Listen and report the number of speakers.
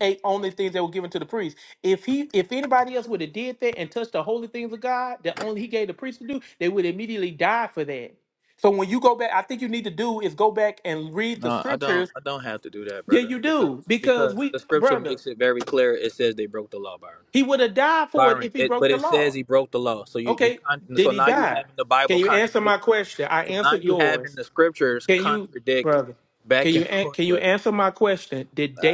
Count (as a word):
two